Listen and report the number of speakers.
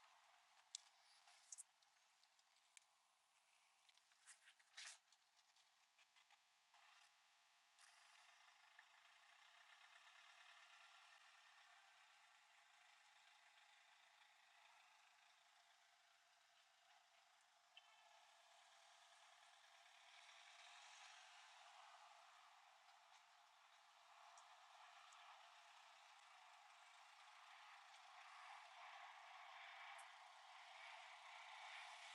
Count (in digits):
0